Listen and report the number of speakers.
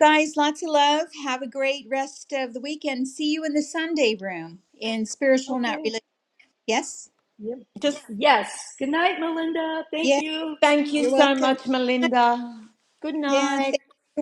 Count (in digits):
3